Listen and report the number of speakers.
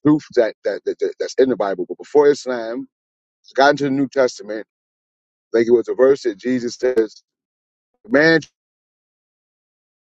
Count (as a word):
one